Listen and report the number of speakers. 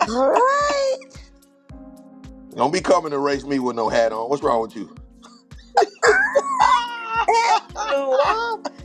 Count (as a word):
two